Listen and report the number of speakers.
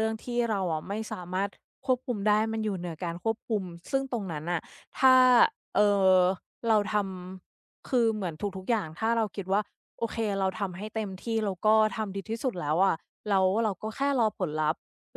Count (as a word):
one